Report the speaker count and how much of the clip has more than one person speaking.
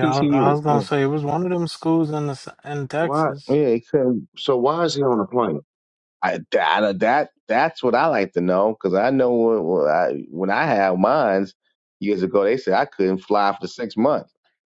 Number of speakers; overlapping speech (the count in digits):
3, about 8%